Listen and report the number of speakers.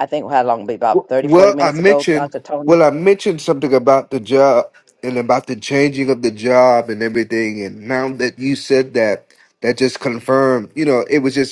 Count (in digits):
2